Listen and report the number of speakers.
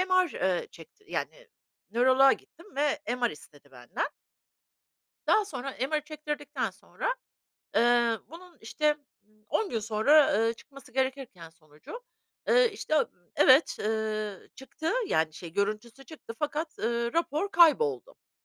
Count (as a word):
one